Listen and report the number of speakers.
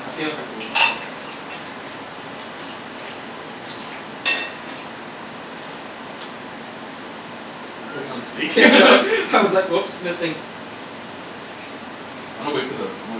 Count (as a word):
two